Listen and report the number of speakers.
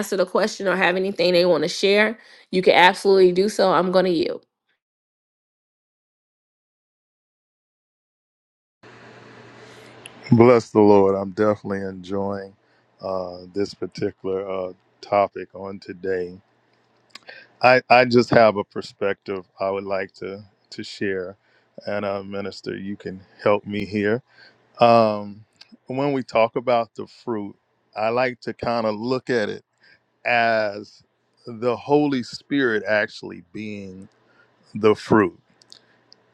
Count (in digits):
2